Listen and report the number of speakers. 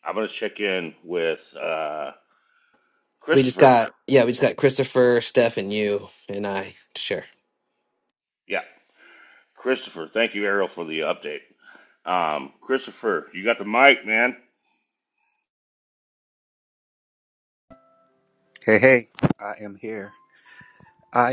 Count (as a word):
three